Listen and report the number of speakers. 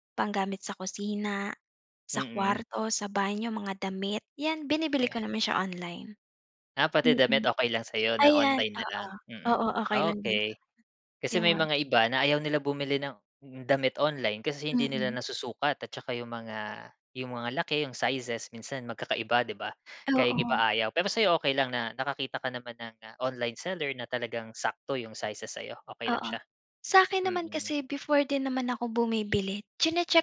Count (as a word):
two